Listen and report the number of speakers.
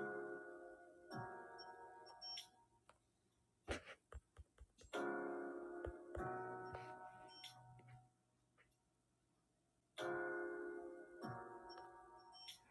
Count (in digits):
0